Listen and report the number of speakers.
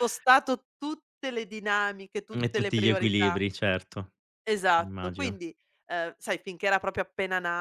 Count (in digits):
2